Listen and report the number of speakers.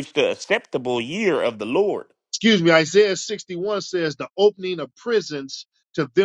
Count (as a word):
two